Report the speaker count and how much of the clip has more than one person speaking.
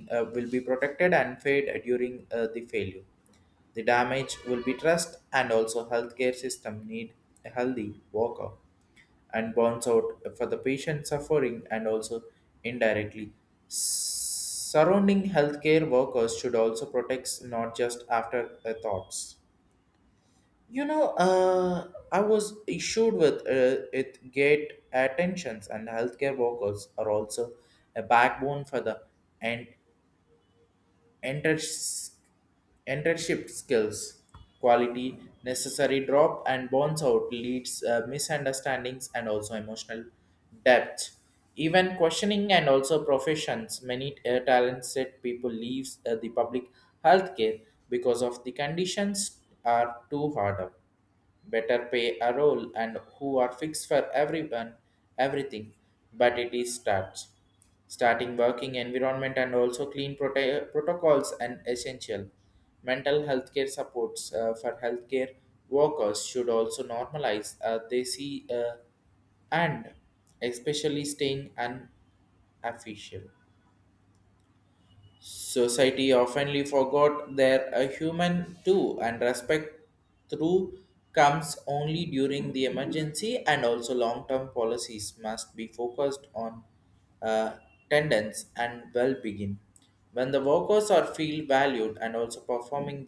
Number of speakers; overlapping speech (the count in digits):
1, no overlap